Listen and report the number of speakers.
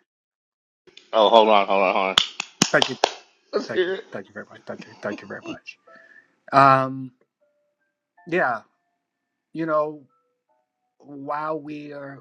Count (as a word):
two